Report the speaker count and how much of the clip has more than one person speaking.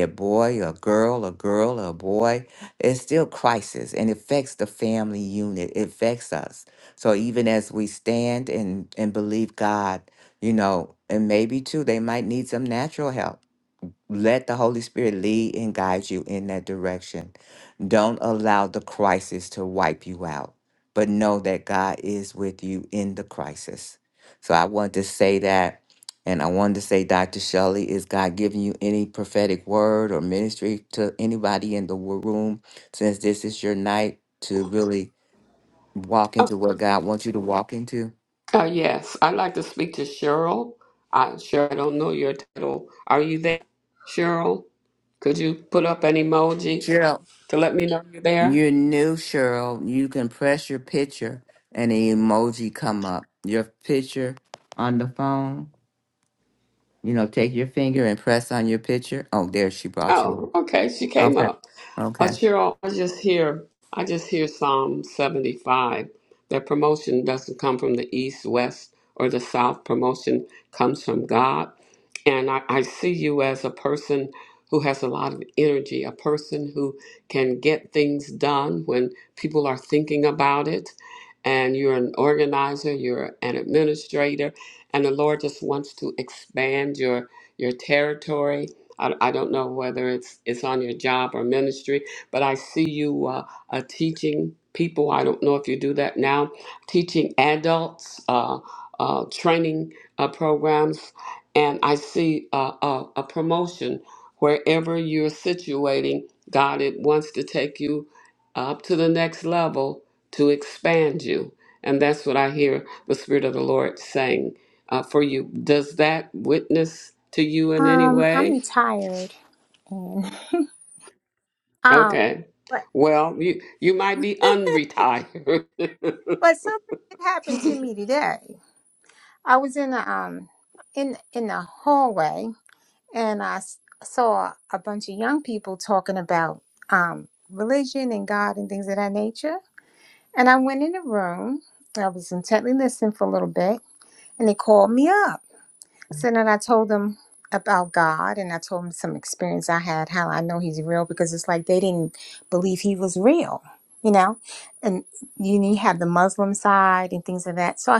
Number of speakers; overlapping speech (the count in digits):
3, about 2%